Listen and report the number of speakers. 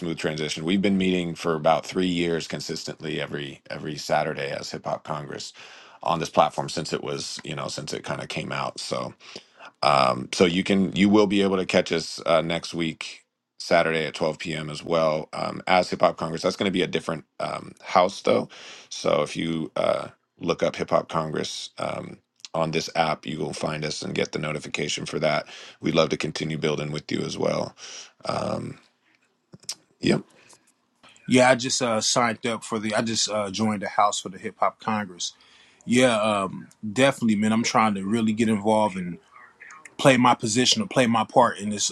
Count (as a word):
two